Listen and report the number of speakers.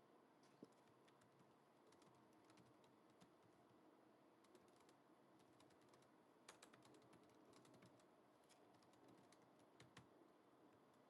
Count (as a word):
zero